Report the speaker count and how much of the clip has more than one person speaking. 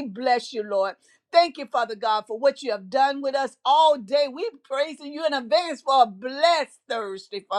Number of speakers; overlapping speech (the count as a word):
one, no overlap